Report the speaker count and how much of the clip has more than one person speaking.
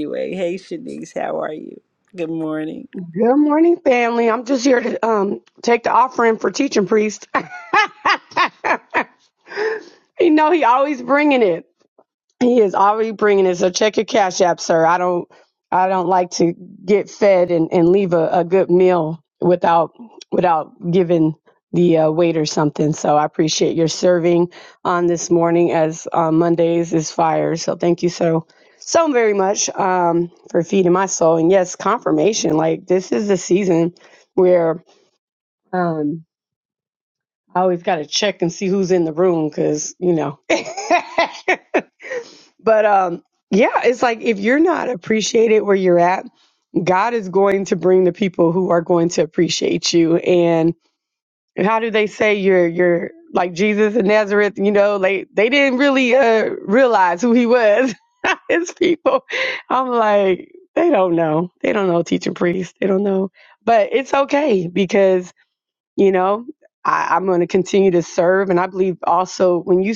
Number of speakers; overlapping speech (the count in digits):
2, no overlap